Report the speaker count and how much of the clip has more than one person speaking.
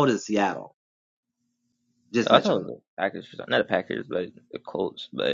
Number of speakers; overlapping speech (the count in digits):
2, about 8%